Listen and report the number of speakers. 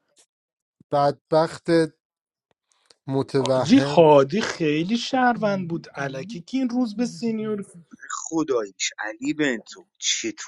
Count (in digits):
3